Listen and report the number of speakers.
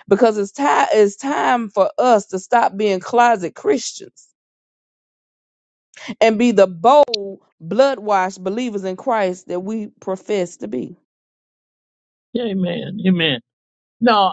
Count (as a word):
two